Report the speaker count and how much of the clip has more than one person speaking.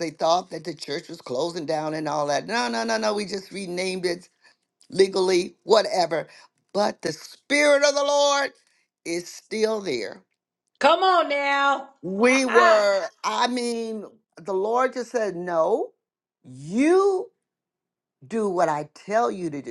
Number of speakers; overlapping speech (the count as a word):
two, no overlap